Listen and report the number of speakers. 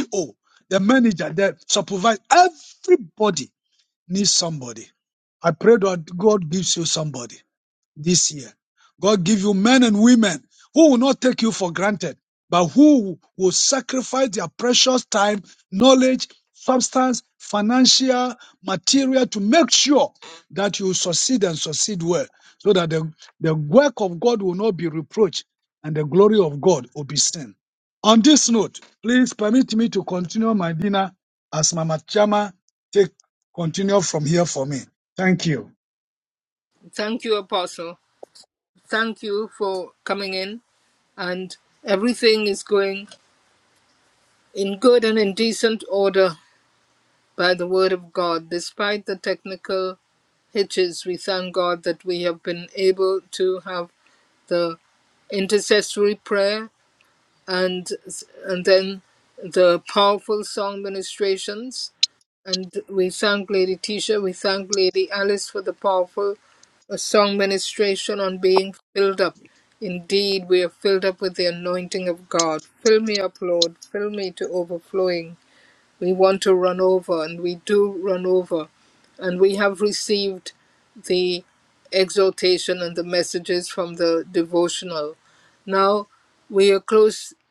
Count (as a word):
two